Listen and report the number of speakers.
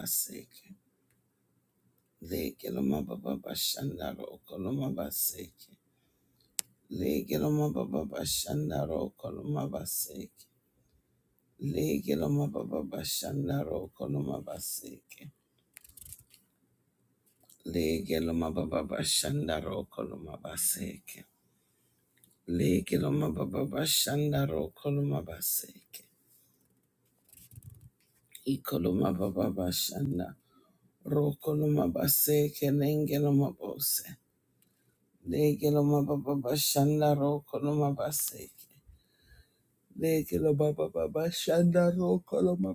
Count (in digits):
1